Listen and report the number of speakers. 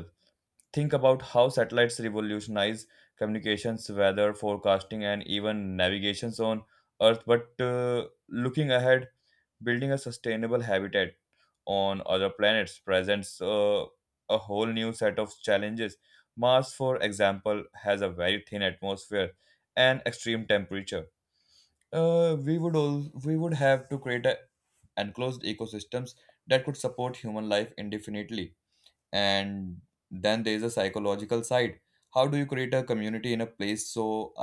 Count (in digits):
1